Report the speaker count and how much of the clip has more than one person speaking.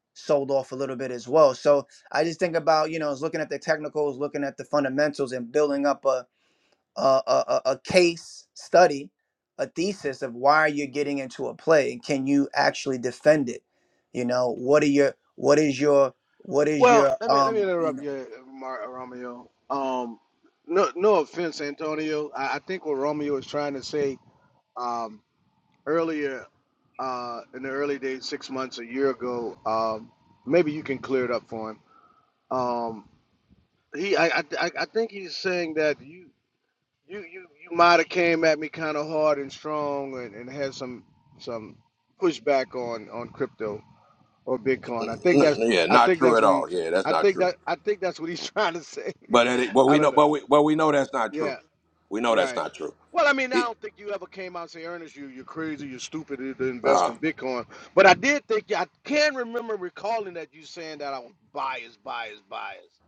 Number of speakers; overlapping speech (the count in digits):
3, about 7%